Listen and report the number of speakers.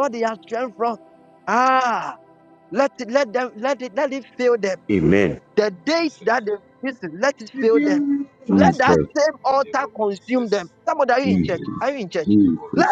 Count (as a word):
two